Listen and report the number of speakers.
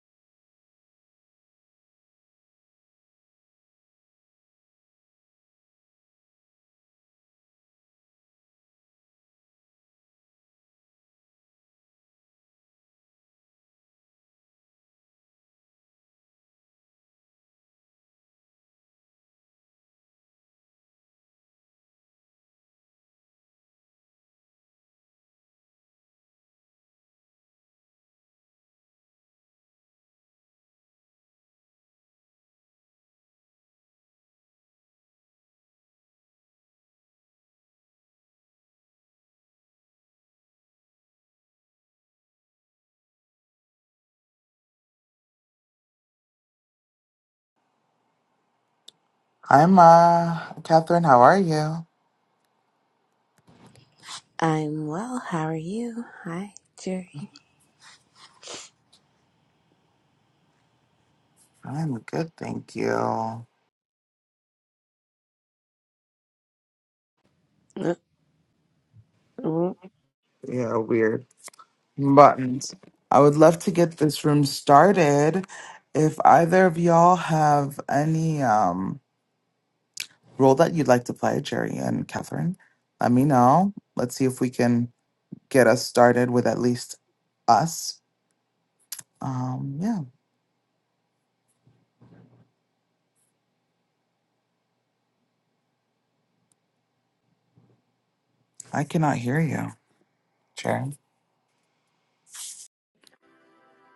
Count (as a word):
two